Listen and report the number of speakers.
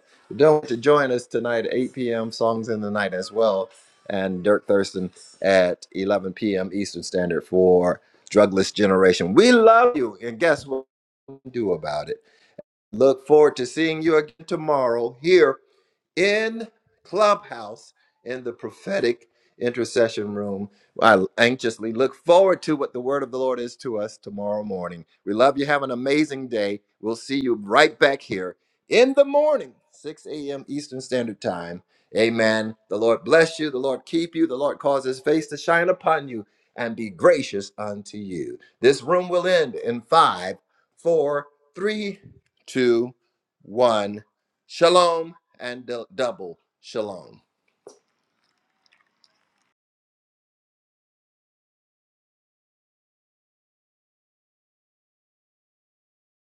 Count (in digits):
1